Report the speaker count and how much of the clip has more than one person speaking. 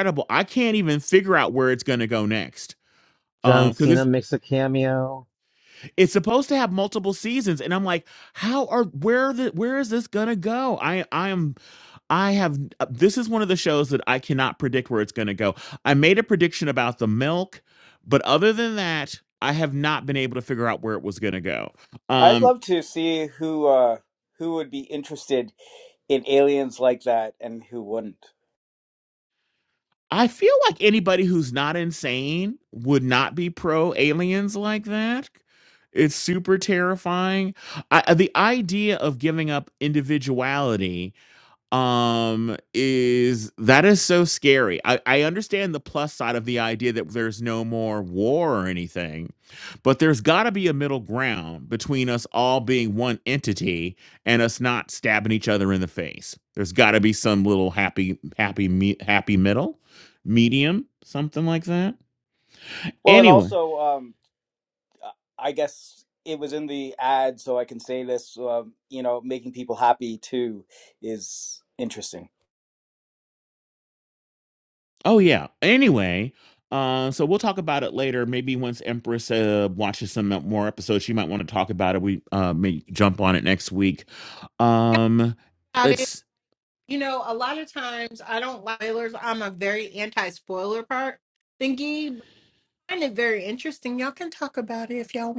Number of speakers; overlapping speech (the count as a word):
four, about 2%